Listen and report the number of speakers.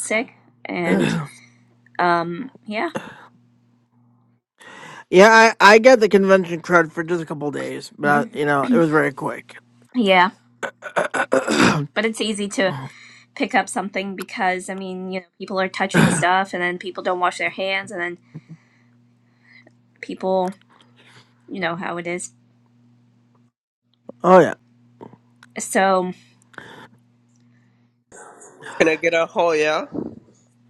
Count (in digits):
3